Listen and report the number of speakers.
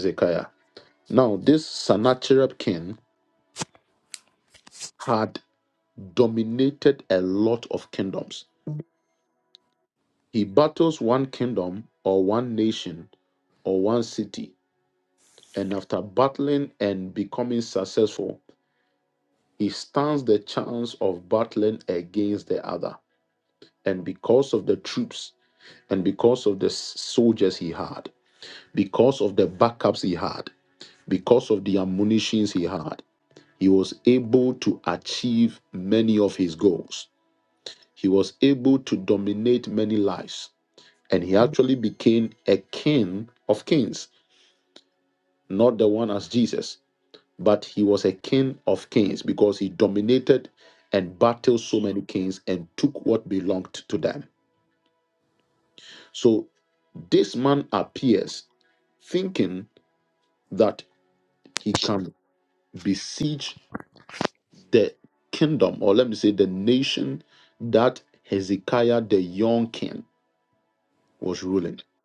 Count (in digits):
1